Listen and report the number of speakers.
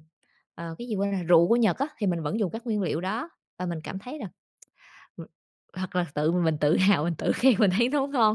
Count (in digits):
1